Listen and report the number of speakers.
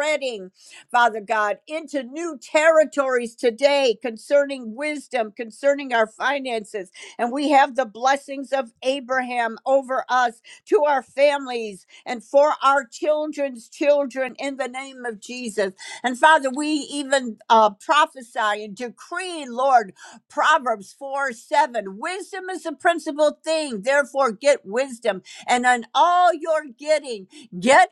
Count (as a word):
one